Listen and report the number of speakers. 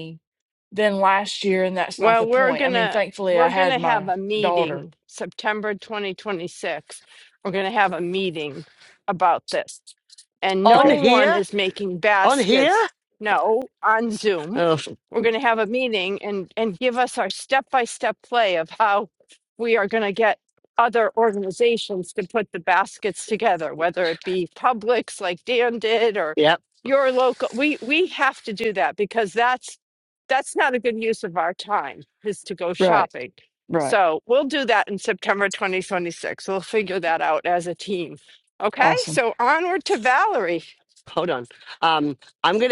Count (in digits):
3